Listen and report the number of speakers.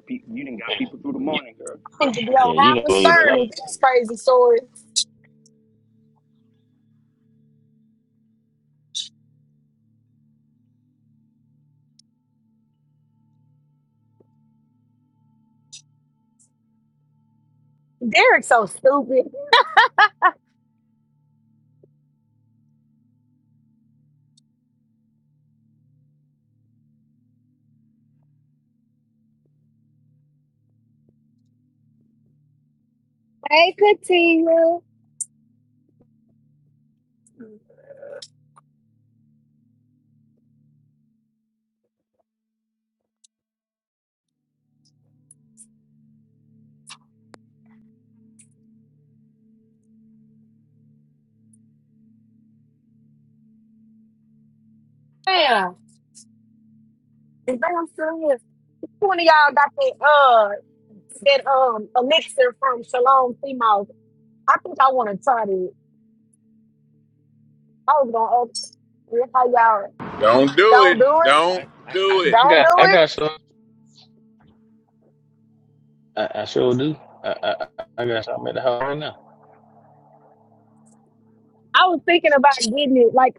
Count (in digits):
4